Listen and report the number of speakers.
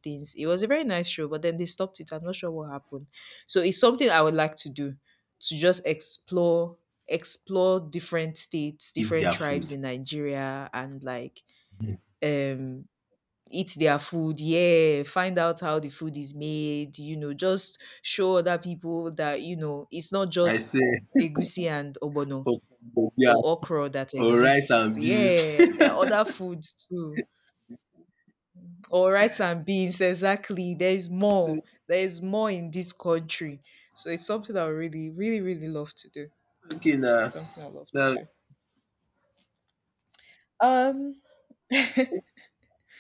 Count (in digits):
2